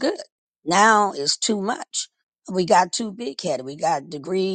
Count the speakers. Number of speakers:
1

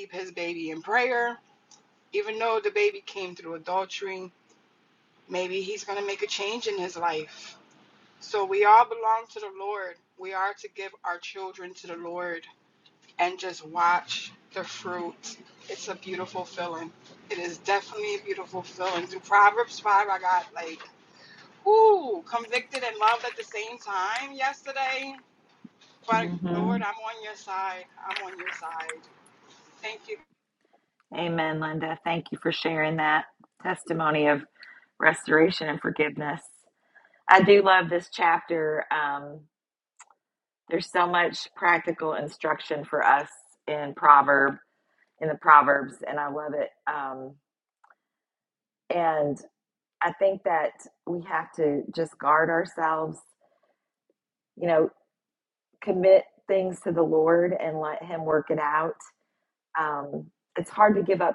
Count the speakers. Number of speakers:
2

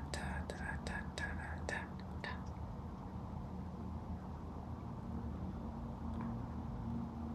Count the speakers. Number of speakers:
0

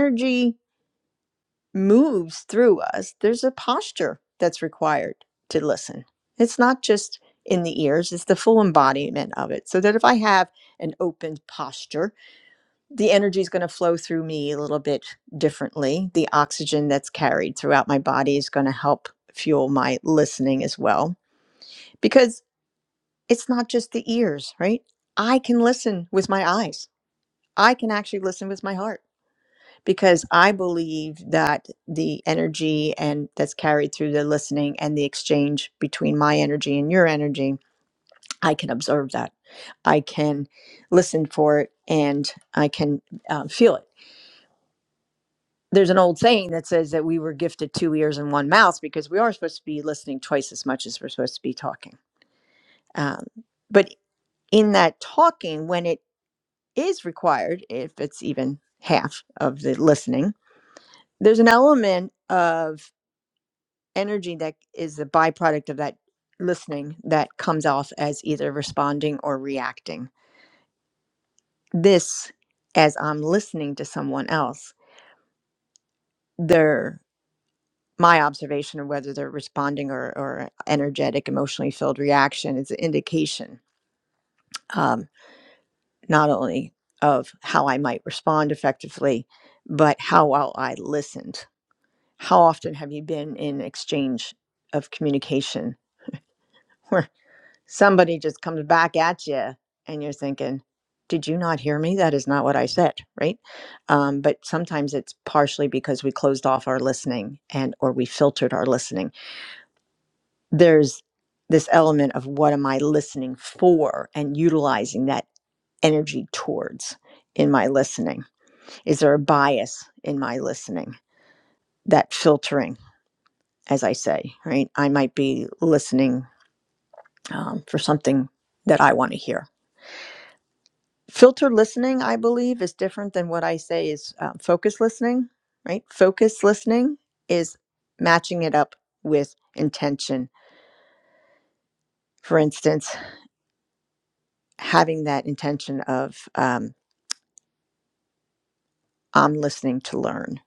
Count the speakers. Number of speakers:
1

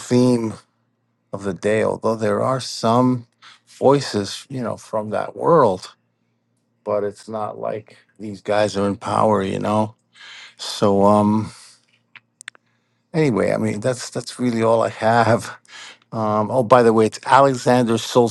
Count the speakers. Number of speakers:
1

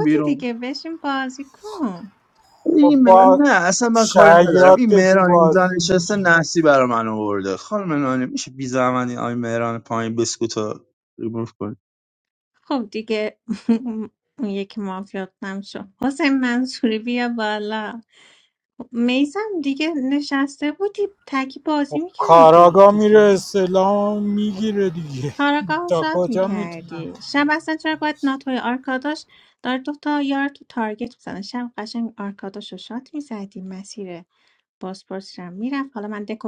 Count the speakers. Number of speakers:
3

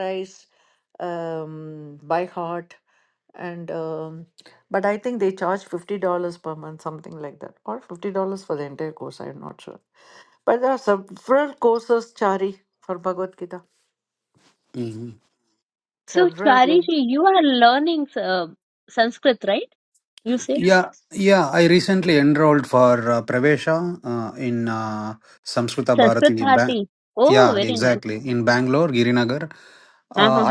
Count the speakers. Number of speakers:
3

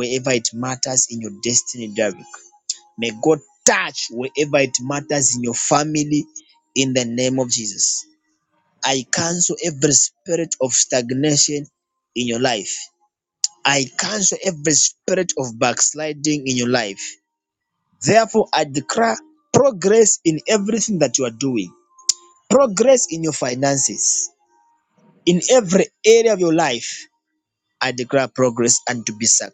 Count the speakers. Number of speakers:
1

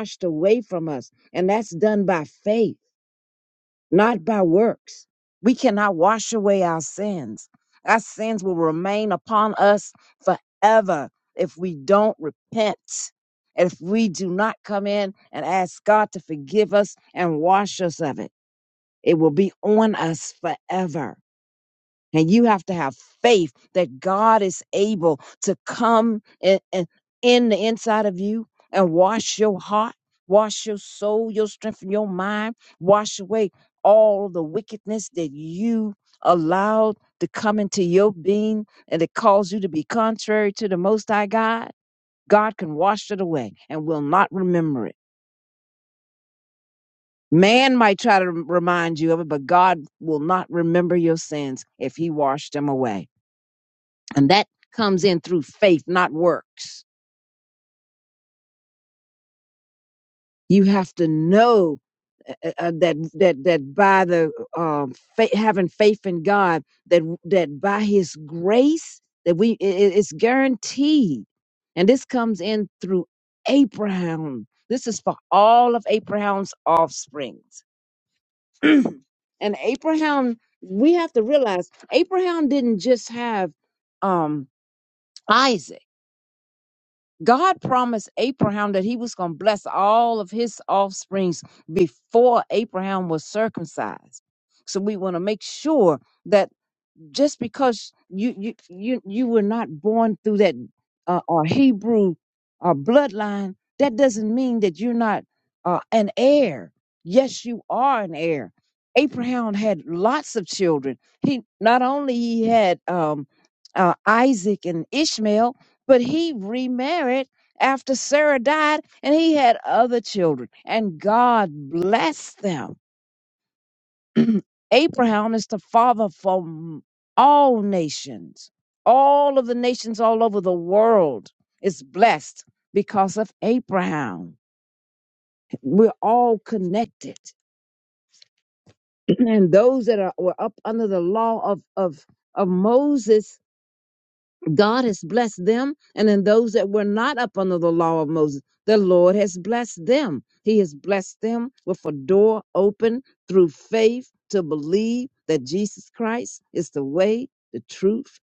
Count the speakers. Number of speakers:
1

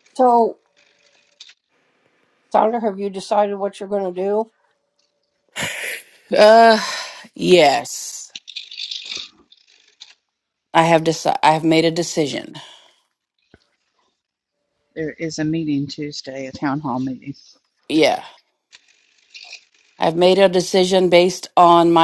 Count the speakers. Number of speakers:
3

